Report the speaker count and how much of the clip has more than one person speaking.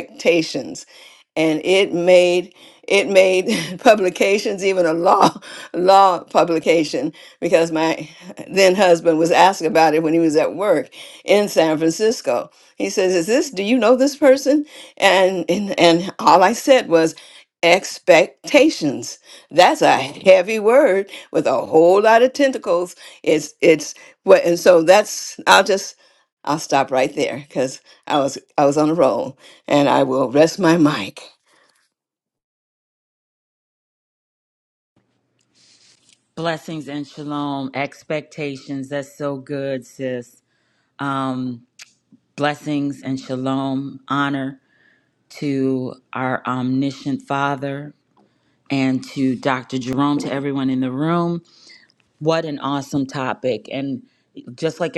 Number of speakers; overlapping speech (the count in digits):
2, no overlap